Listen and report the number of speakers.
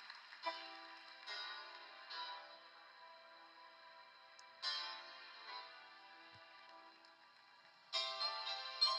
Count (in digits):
0